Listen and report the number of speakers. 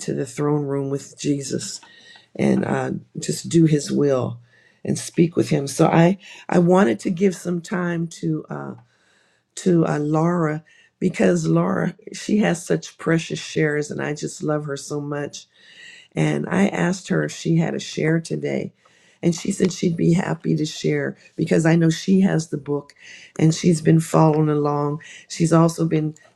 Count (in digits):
1